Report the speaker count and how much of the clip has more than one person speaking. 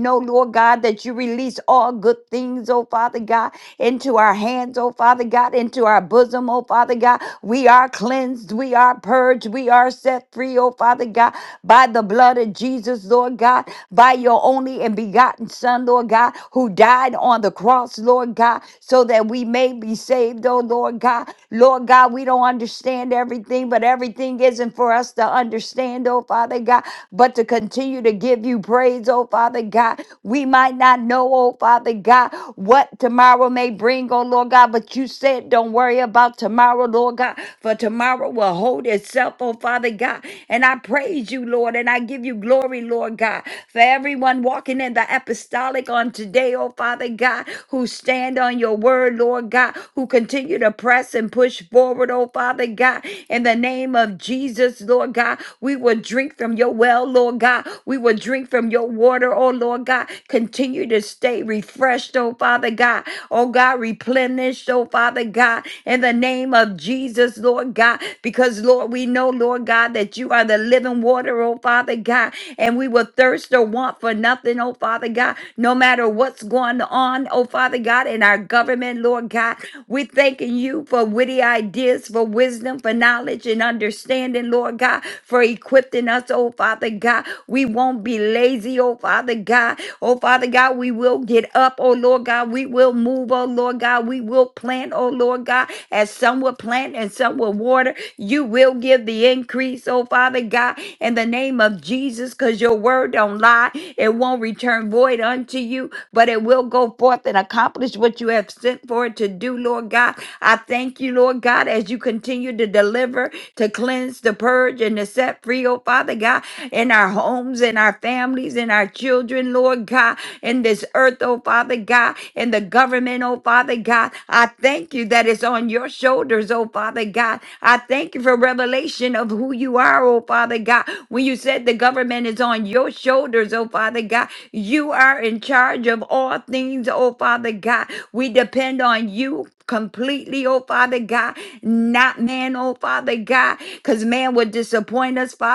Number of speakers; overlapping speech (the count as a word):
one, no overlap